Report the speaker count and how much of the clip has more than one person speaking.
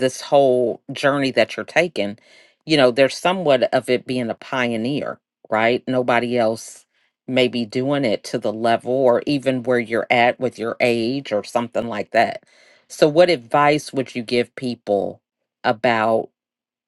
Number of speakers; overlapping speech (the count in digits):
1, no overlap